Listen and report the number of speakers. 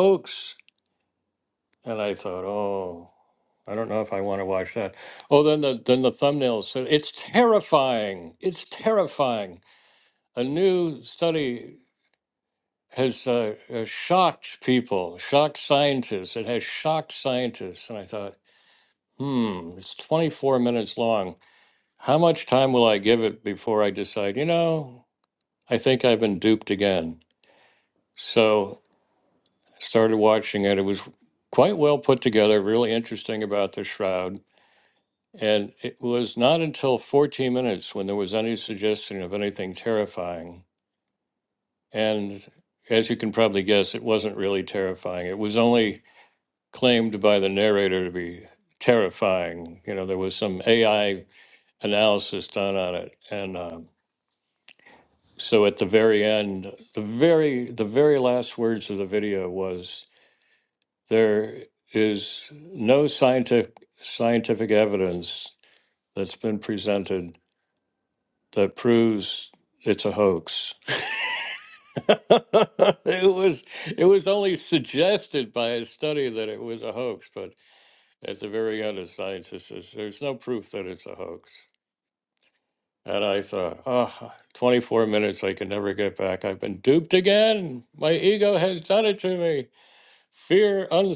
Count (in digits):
1